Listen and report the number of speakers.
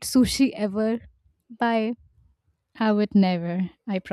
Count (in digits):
2